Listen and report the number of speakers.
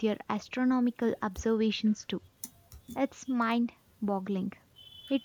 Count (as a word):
one